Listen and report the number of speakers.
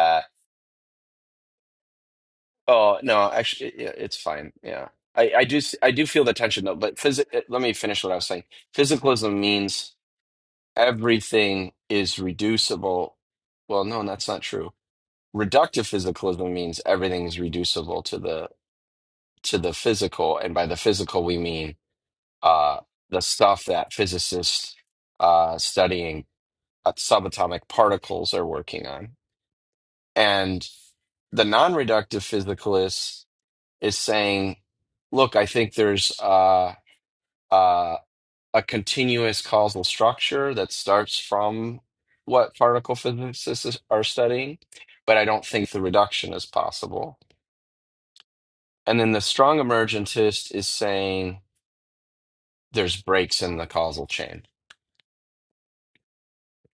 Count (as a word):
one